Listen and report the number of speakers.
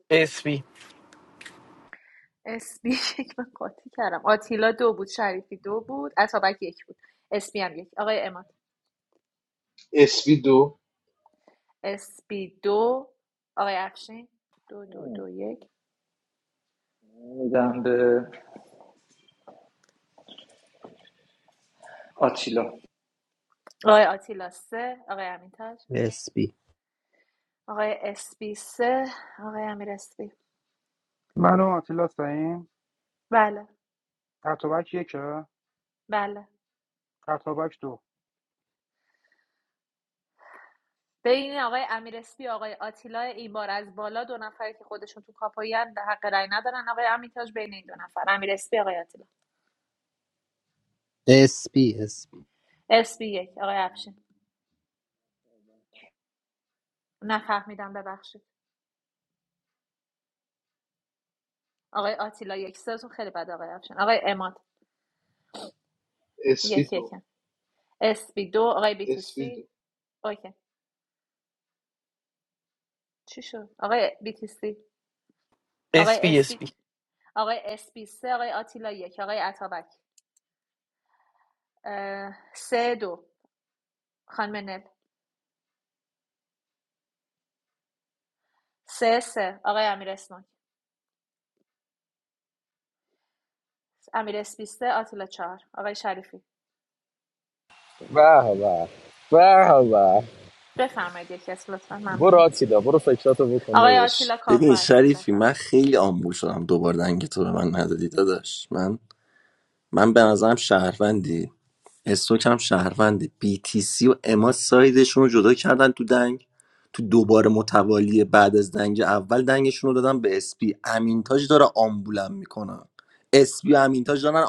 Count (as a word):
eight